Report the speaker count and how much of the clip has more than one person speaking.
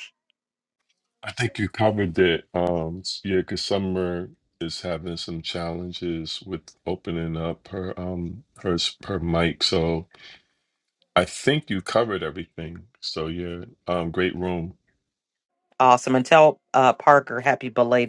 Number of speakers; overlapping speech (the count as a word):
two, no overlap